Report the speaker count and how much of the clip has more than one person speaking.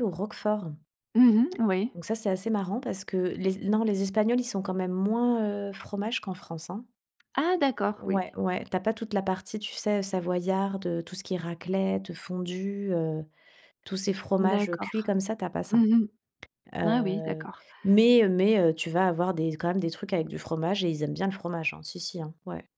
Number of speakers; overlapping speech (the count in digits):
2, about 7%